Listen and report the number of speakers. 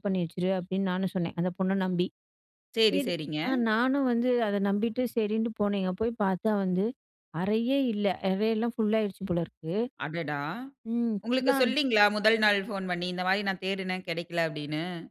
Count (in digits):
2